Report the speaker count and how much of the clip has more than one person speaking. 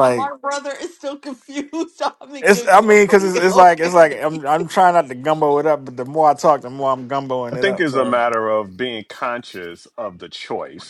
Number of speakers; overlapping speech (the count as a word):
three, about 22%